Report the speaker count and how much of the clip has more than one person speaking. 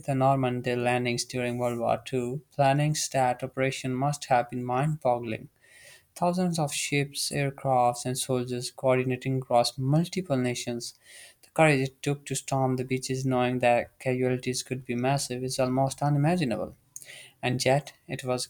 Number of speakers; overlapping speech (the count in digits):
1, no overlap